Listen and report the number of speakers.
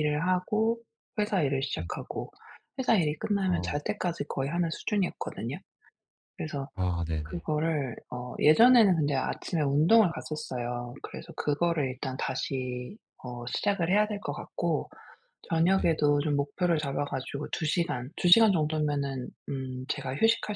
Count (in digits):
2